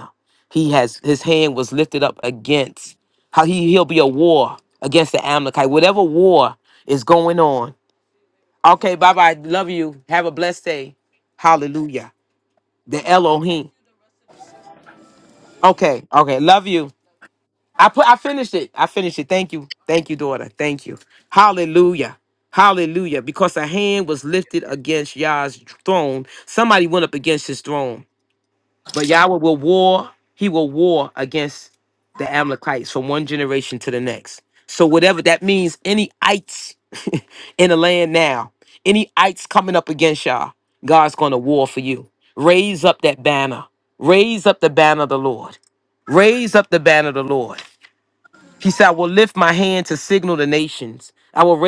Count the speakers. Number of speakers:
one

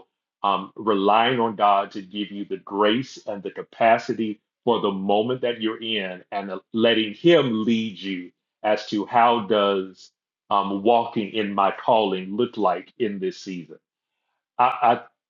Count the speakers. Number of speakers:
one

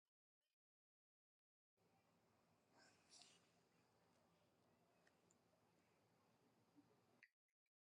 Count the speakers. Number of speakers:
zero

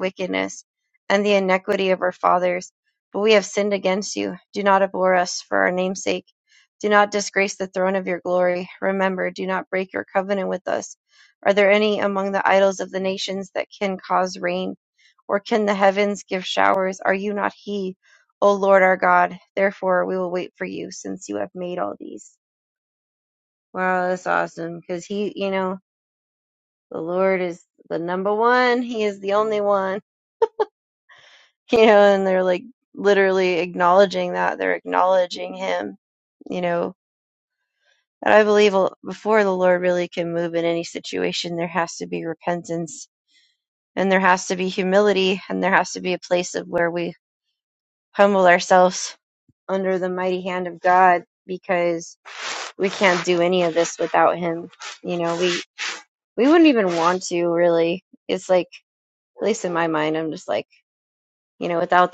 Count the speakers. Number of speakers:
one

